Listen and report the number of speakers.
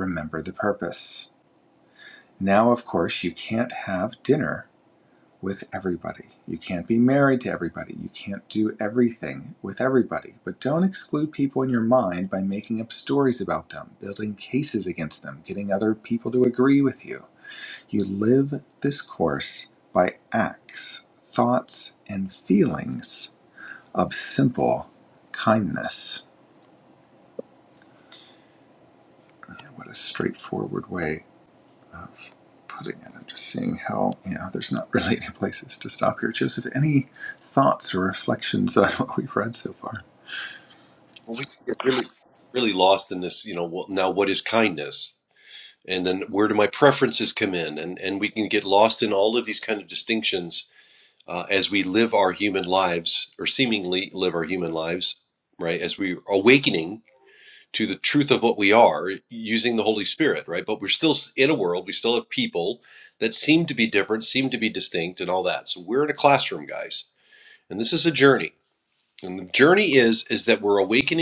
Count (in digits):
2